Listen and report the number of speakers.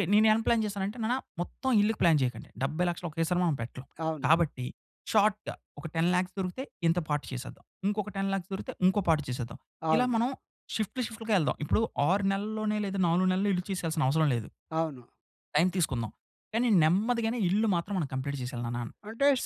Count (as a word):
two